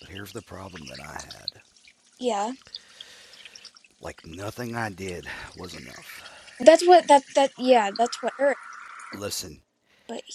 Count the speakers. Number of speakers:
2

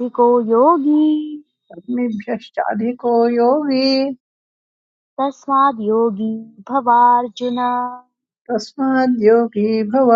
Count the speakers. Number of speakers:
2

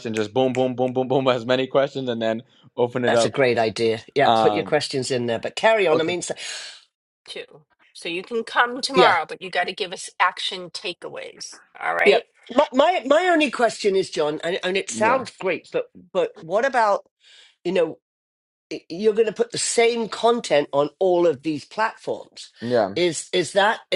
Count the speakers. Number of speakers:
3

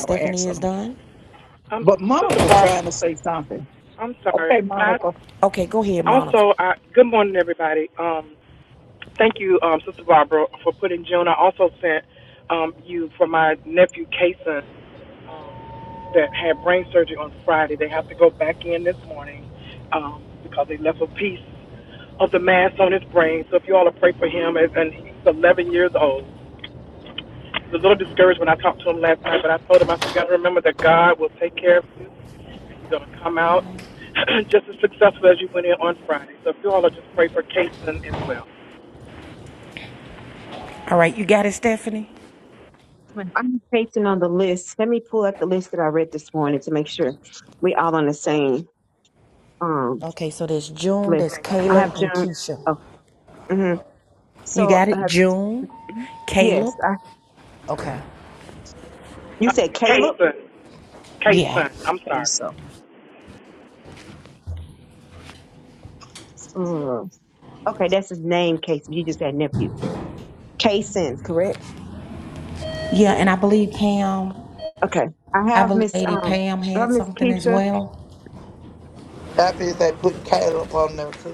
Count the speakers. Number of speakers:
5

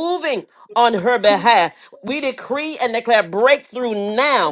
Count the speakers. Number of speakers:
1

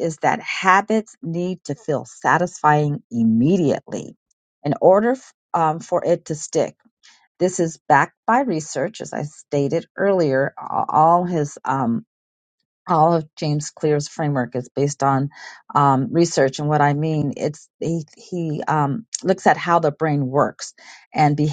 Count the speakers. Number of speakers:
1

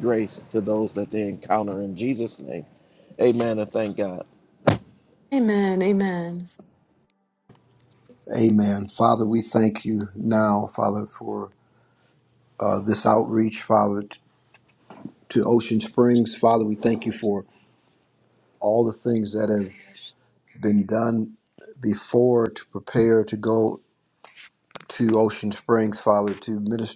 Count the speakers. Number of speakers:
3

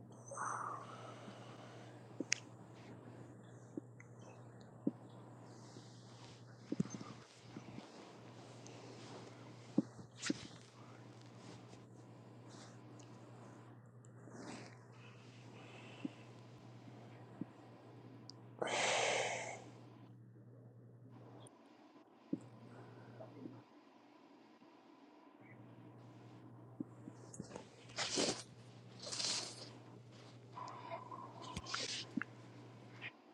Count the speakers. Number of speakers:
0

